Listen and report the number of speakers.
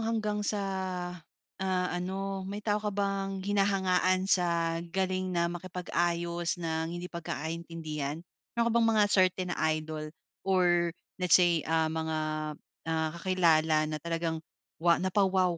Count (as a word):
one